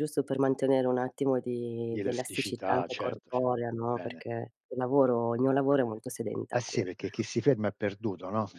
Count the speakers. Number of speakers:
2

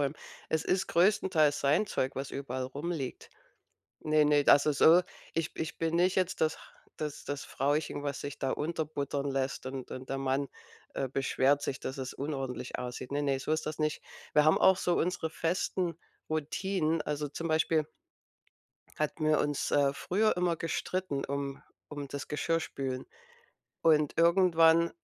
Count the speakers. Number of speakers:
1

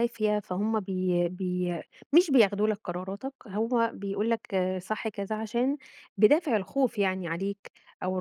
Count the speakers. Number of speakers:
1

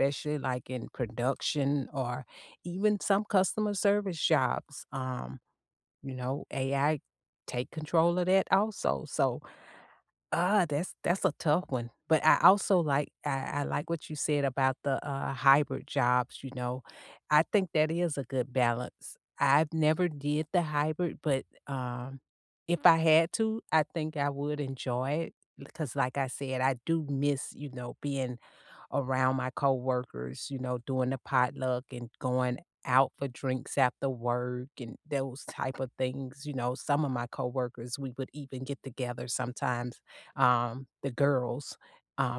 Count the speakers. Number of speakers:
1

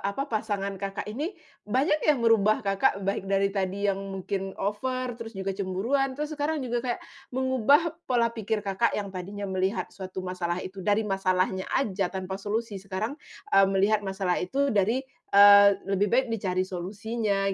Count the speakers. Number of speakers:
1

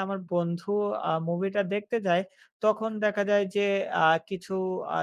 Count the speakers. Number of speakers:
1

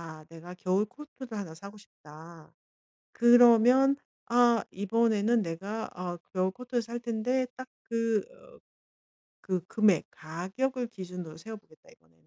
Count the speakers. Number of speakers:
1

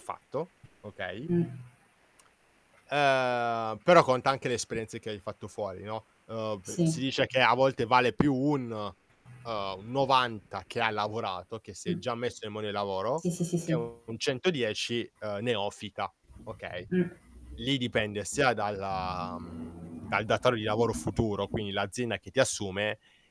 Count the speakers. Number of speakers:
2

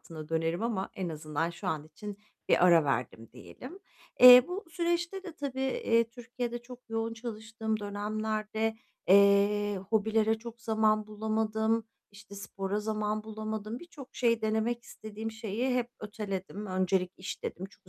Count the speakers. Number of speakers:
1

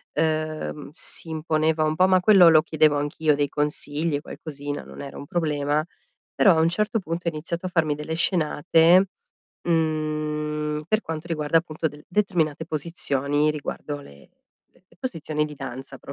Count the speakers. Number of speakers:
1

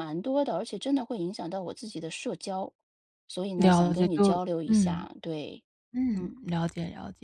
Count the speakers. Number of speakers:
2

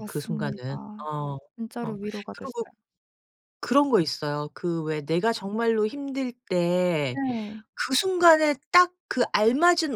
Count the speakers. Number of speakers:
2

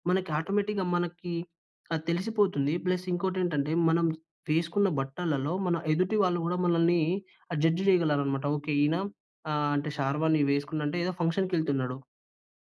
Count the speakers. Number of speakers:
1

